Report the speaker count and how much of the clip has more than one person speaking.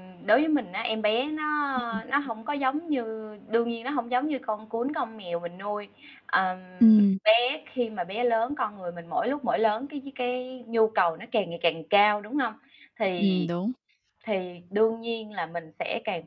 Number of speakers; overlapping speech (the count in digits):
2, about 2%